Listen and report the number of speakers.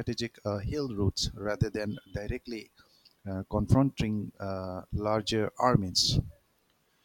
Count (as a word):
one